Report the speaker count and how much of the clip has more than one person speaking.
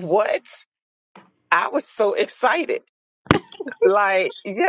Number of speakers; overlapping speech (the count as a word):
one, no overlap